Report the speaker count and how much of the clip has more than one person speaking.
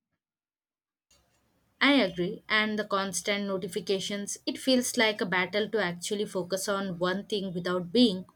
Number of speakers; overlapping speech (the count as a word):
one, no overlap